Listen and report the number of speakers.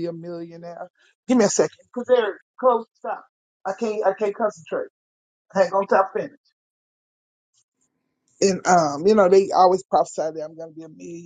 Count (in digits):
1